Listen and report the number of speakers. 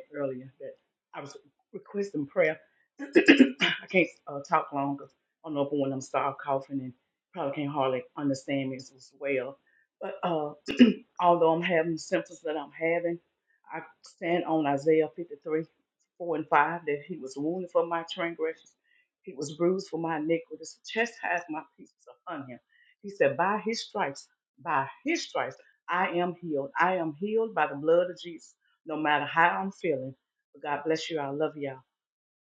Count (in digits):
1